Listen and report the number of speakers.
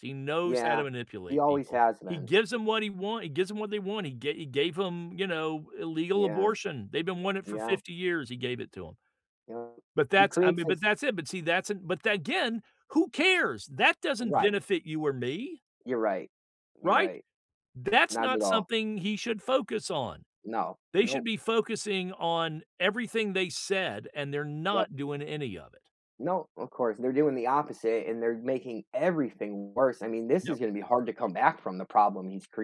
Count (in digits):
2